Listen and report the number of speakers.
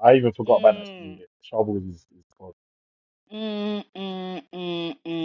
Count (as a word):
two